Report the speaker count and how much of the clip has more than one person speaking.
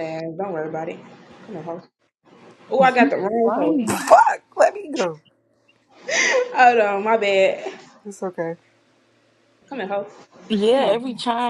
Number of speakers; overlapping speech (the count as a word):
three, about 7%